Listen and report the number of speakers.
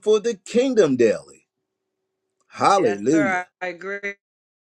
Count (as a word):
two